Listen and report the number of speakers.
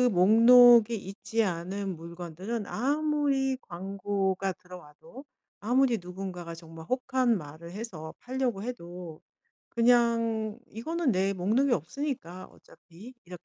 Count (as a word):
one